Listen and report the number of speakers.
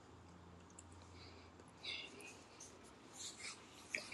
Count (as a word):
zero